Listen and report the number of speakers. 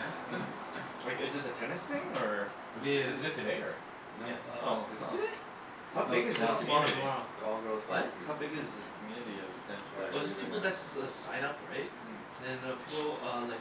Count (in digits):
4